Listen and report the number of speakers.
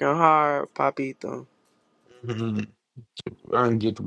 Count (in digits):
2